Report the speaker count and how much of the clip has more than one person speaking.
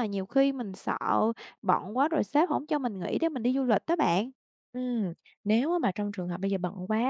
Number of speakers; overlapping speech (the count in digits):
2, no overlap